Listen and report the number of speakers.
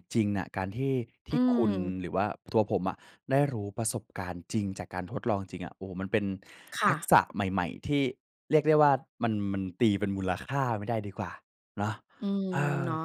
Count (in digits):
2